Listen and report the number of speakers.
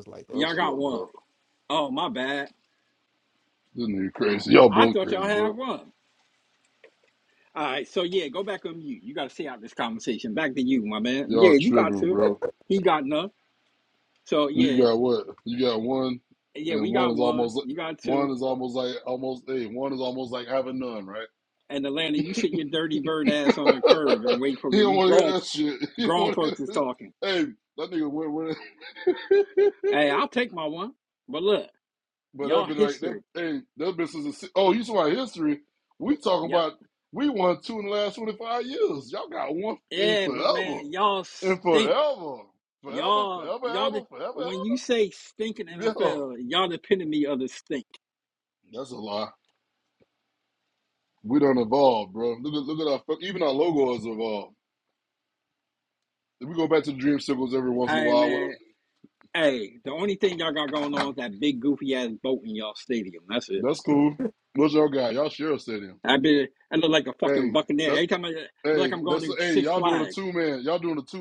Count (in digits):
2